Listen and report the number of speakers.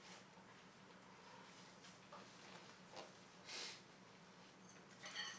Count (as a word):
zero